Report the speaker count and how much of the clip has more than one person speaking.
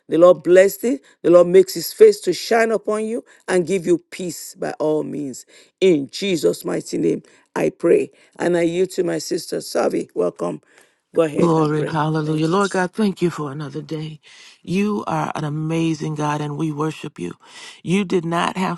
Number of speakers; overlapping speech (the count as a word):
two, about 4%